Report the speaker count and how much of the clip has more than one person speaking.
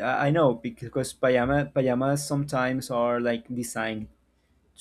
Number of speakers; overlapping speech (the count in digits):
1, no overlap